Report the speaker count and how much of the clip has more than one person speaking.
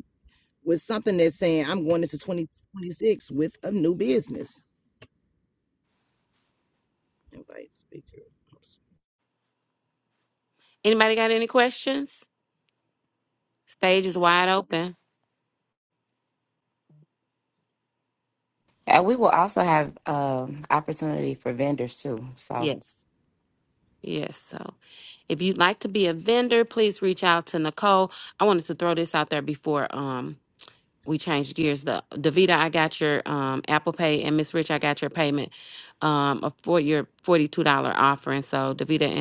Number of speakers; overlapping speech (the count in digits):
3, under 1%